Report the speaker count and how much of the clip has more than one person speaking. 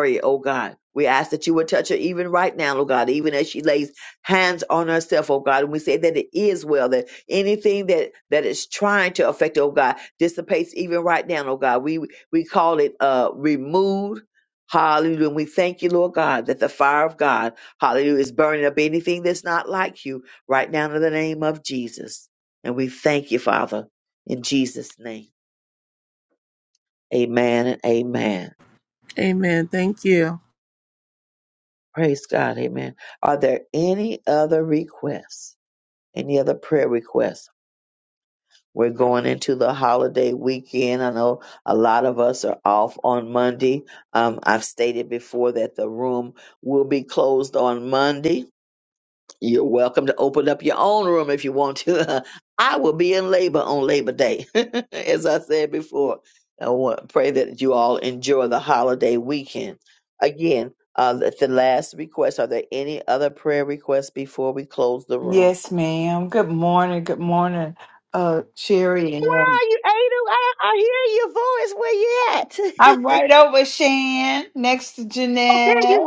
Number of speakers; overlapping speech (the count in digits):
3, about 2%